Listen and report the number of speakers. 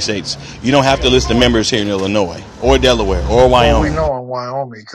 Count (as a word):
two